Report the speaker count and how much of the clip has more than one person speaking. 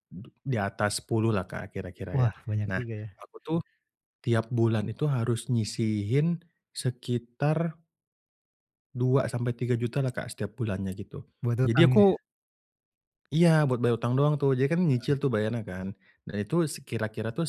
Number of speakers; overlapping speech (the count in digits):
2, about 6%